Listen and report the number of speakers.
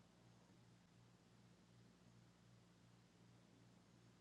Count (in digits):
0